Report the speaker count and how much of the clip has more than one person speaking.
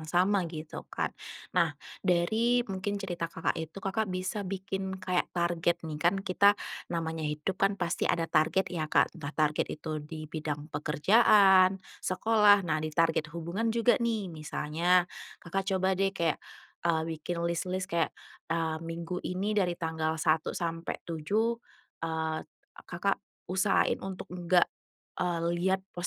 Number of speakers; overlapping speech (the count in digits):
1, no overlap